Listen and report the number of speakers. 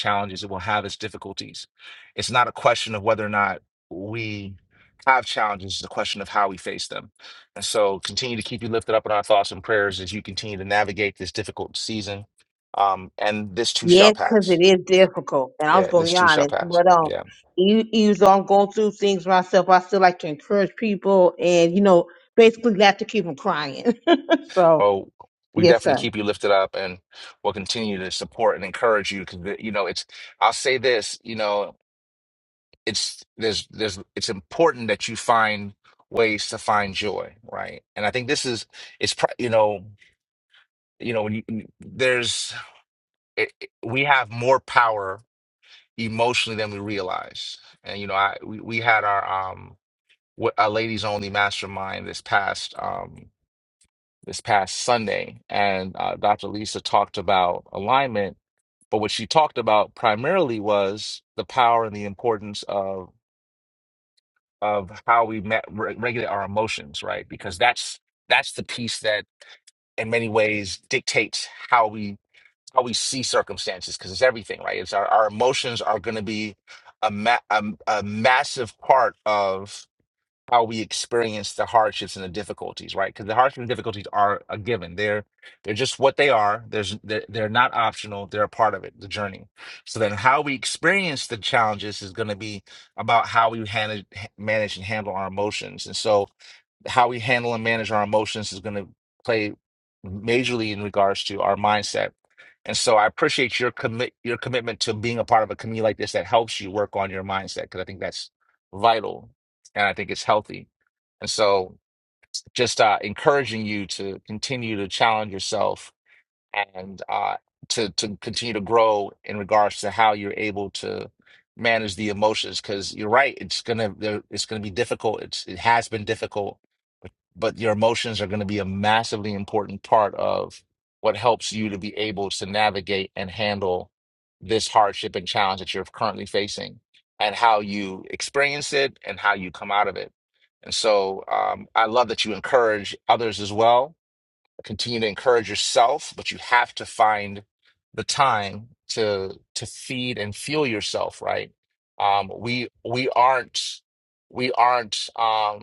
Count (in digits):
2